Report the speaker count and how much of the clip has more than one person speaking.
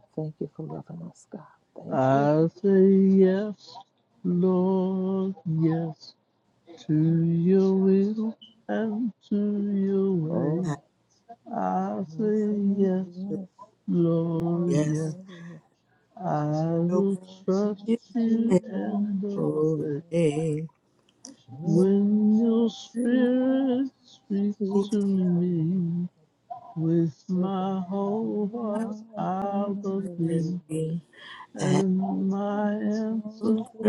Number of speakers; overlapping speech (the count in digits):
3, about 21%